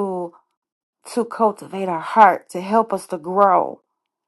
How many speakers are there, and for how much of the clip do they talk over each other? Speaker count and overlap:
one, no overlap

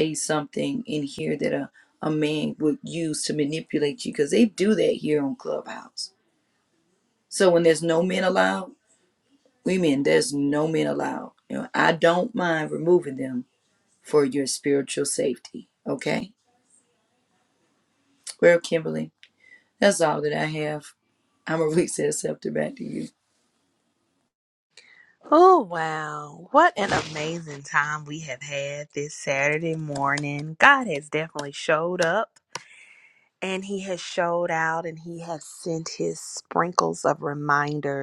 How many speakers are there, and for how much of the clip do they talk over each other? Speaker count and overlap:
two, no overlap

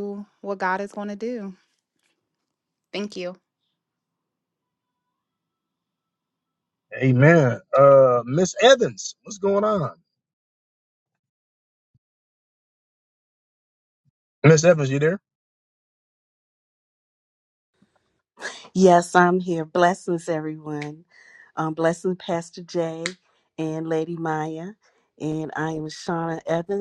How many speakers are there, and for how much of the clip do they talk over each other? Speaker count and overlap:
three, no overlap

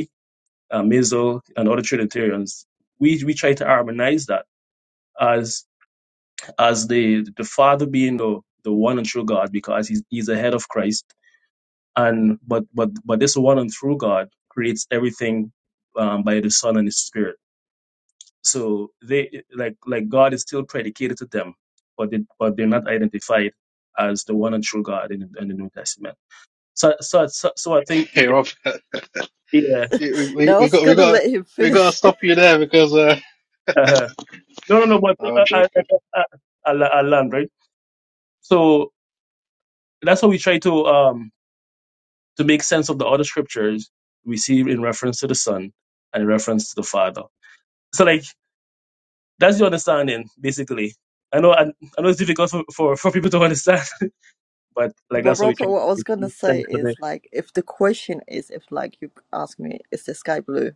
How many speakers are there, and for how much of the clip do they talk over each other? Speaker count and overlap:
three, about 6%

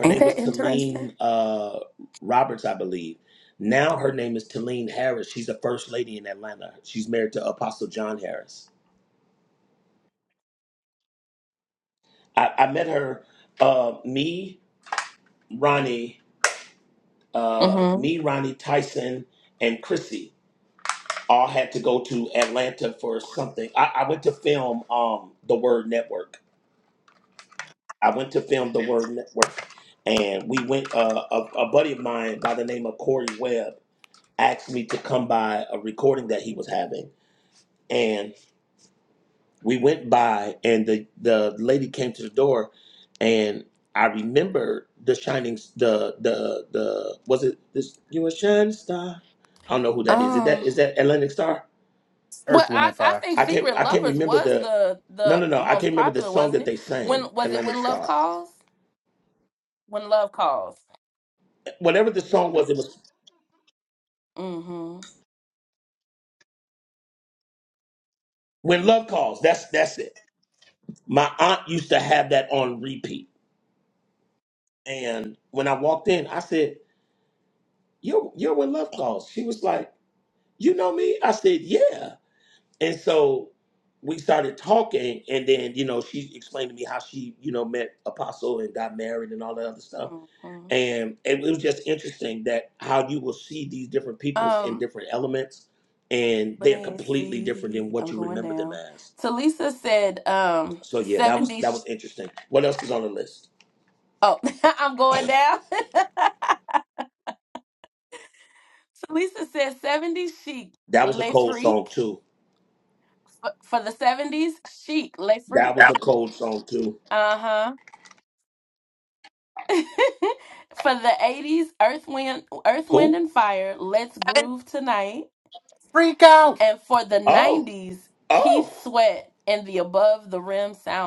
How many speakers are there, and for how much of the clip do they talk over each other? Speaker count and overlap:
three, about 9%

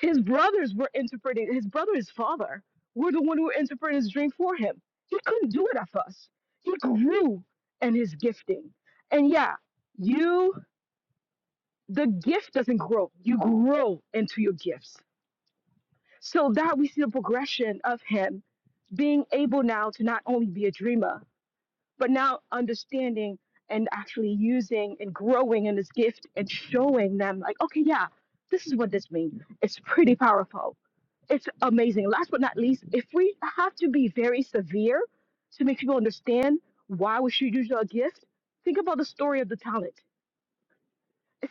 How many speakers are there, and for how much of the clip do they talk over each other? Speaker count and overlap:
one, no overlap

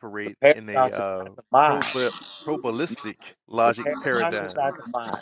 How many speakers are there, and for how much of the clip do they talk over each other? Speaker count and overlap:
two, about 45%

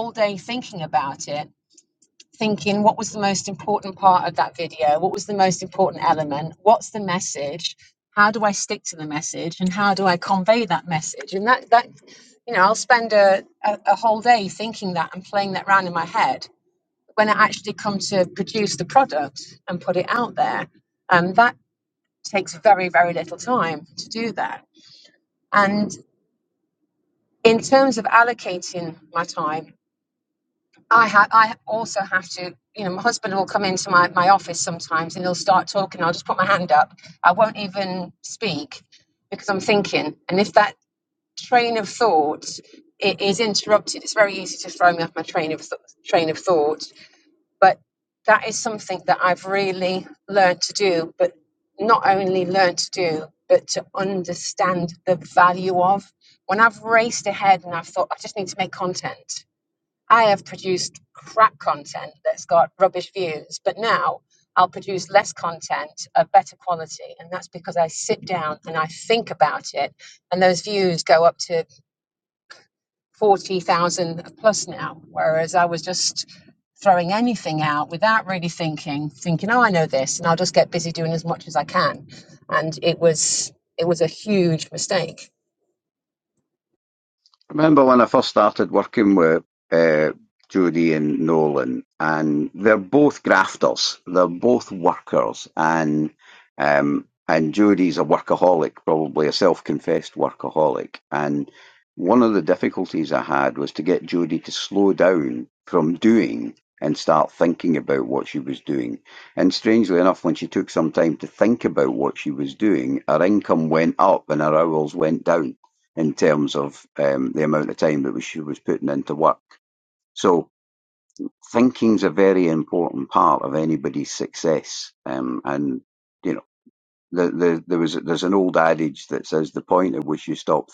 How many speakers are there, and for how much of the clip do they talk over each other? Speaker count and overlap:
two, no overlap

